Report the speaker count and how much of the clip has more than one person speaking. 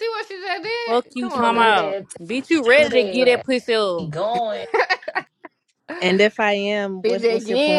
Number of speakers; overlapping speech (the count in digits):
4, about 36%